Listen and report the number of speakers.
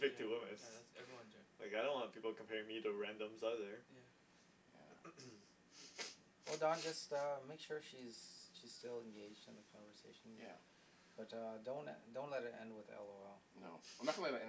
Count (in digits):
4